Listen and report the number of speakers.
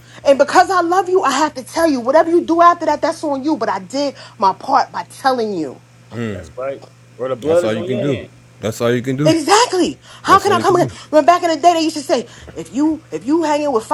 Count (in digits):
3